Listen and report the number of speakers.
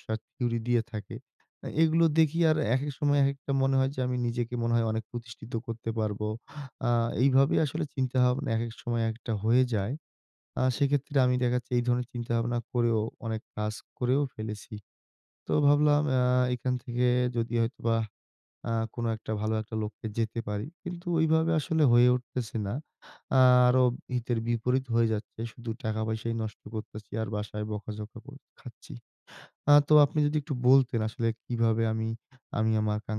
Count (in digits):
1